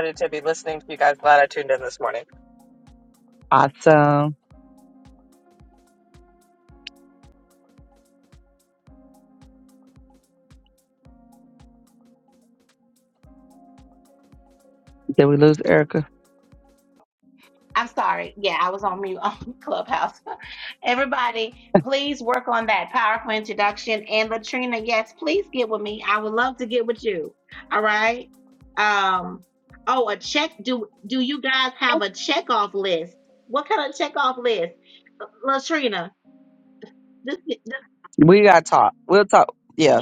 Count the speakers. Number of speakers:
3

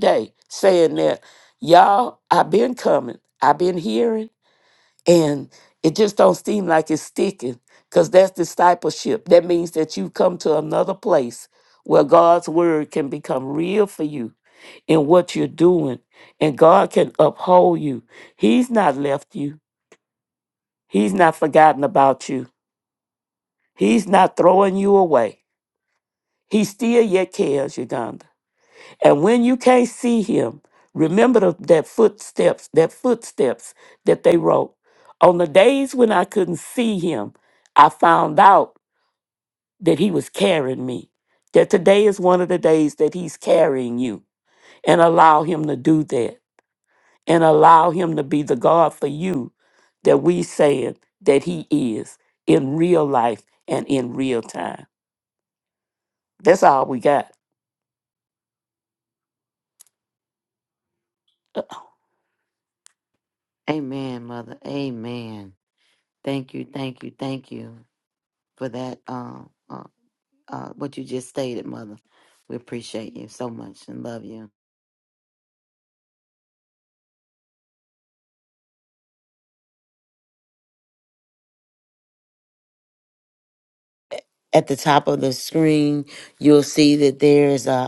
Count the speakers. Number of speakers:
2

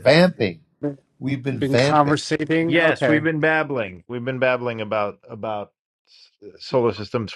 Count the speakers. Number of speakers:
3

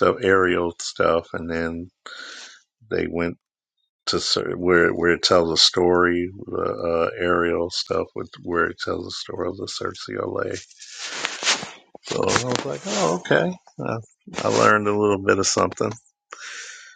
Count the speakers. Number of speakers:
1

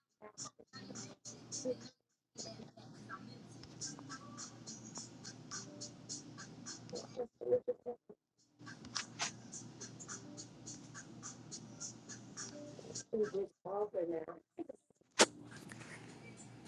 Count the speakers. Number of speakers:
0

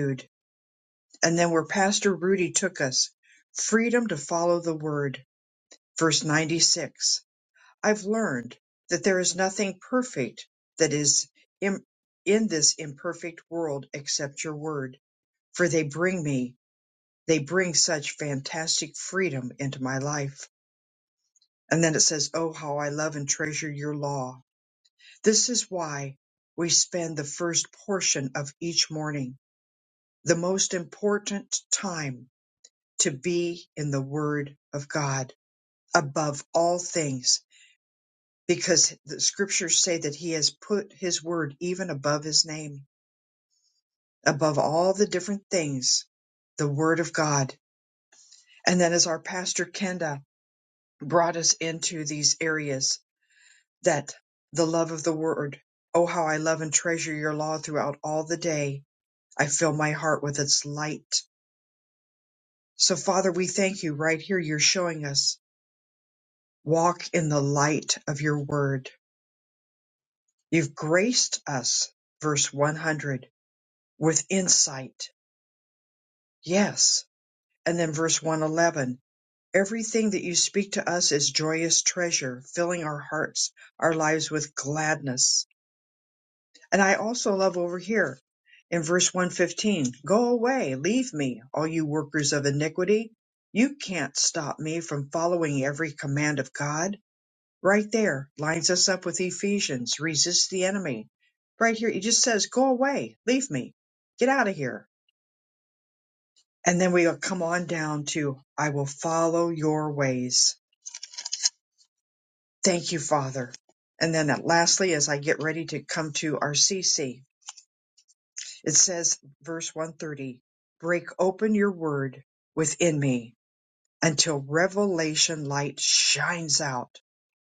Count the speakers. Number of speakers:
1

